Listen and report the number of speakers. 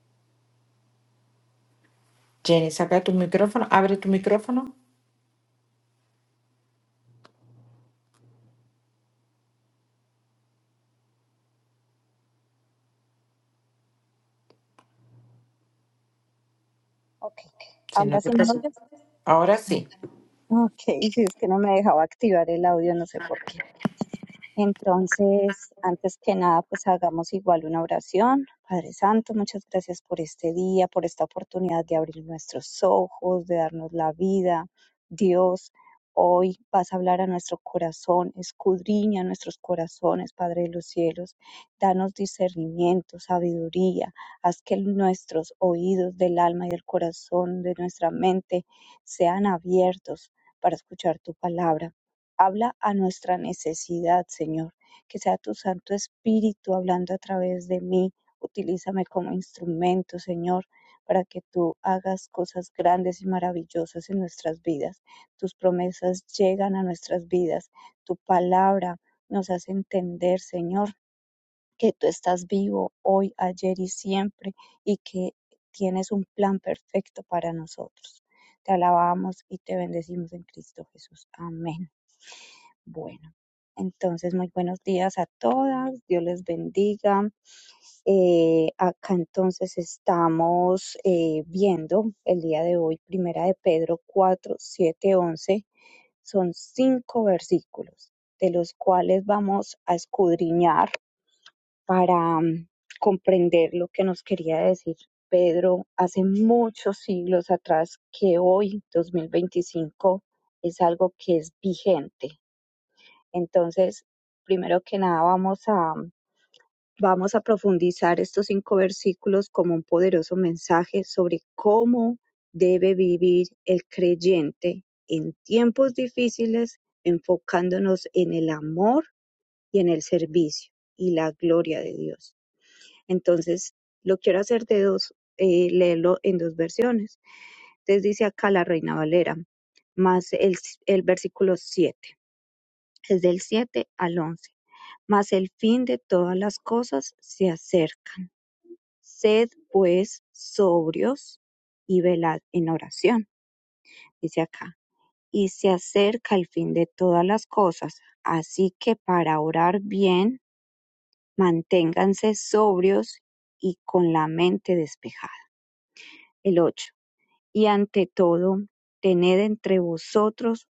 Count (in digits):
2